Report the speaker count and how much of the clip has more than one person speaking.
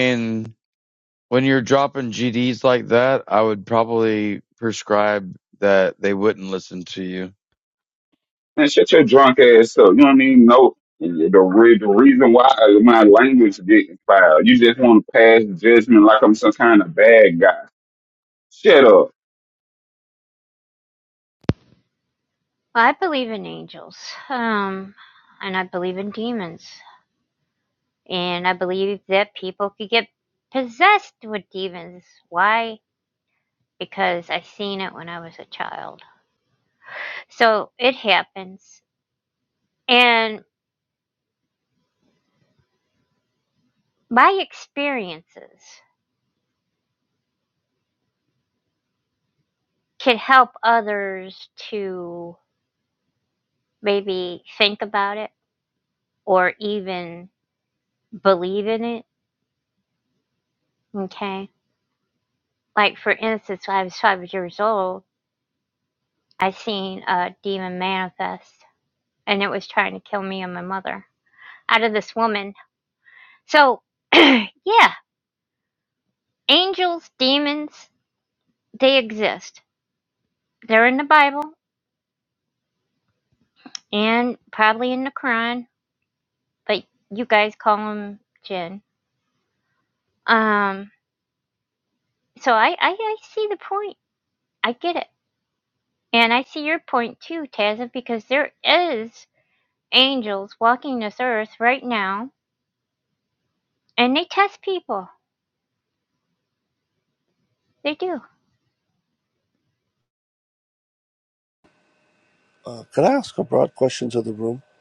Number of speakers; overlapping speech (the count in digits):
4, no overlap